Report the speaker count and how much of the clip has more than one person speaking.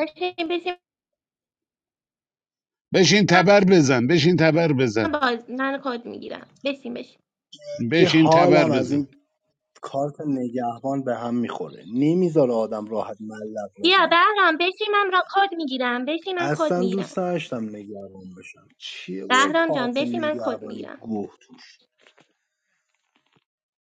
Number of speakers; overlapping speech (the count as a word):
three, about 16%